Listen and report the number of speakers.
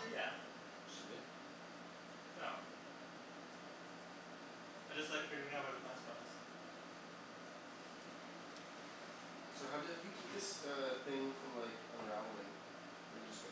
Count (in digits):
2